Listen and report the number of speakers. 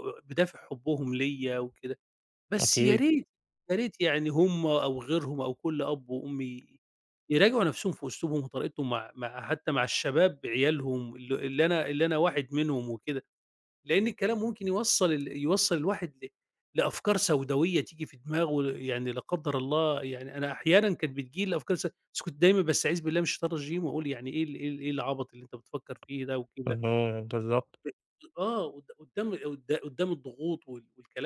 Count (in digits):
2